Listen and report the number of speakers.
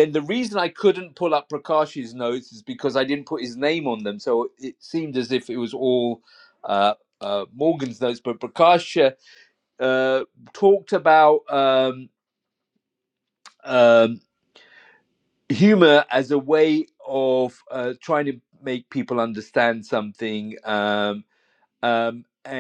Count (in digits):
1